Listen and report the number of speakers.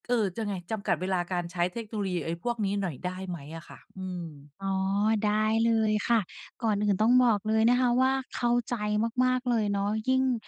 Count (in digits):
2